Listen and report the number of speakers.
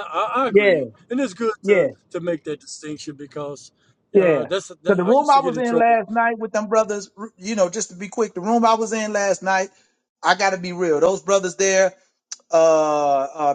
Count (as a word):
two